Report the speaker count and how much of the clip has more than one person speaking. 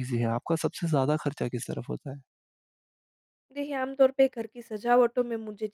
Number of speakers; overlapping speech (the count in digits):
2, no overlap